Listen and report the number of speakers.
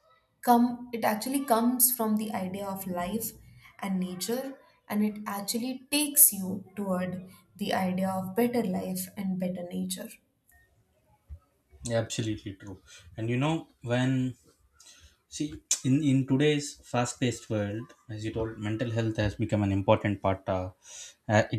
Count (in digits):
2